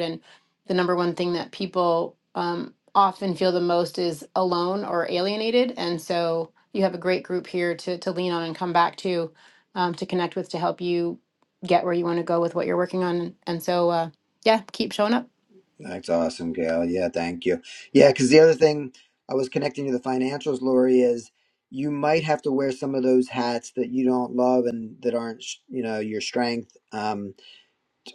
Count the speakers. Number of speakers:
2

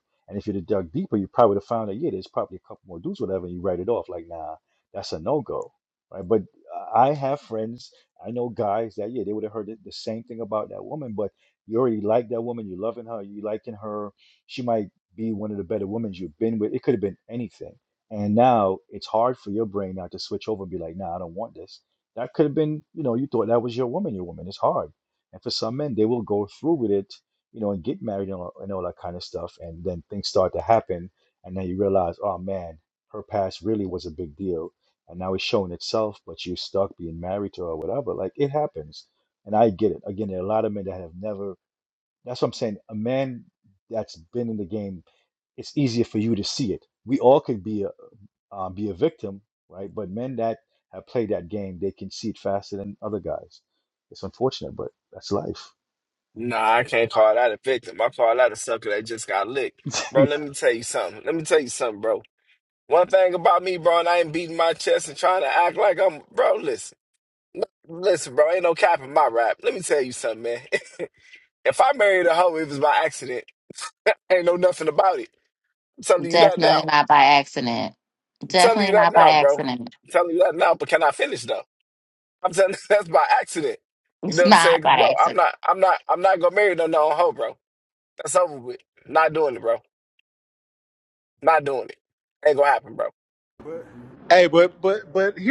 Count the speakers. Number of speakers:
4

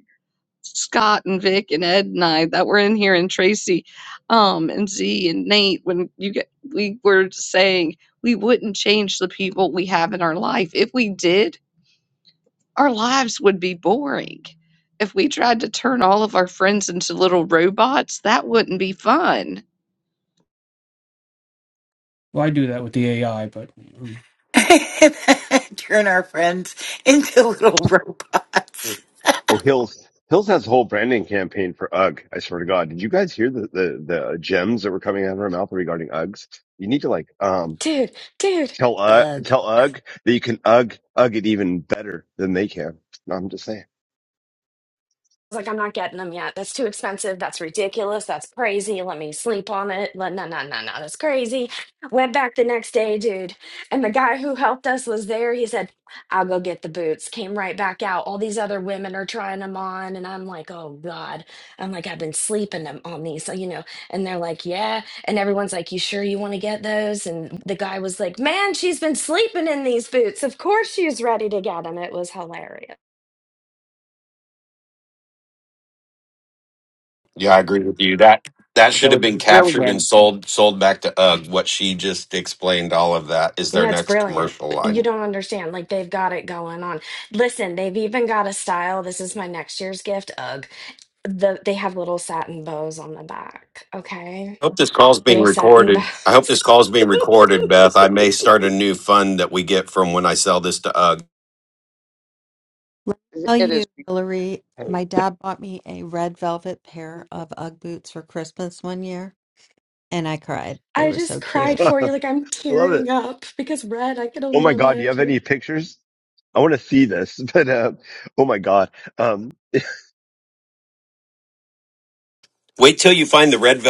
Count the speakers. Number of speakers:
7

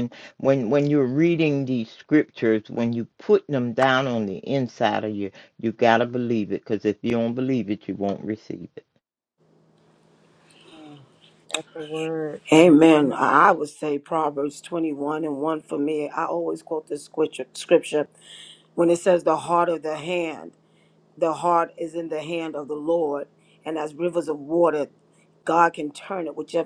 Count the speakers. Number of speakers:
3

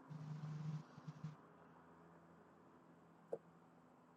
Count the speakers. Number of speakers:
0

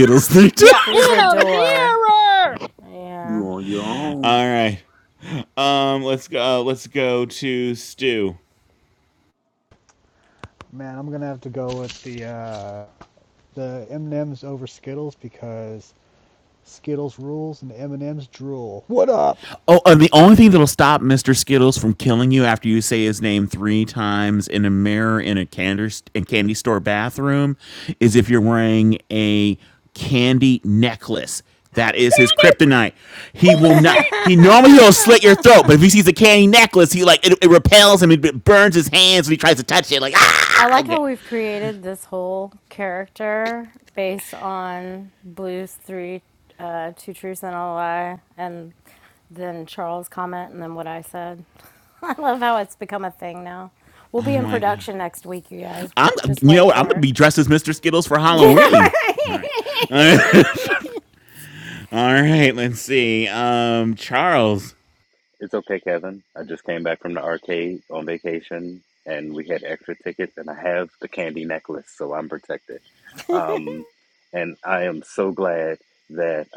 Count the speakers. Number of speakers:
6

